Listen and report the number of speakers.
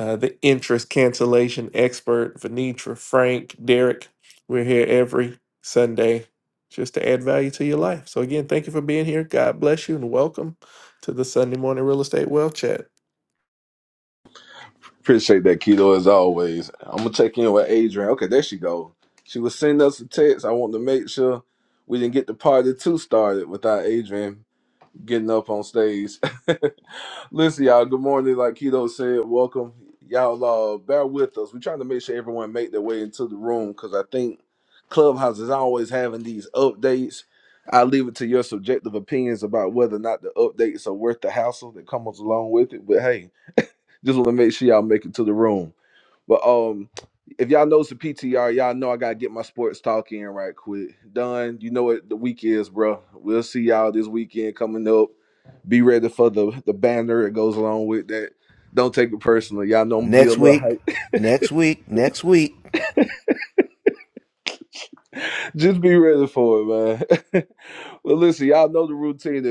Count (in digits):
3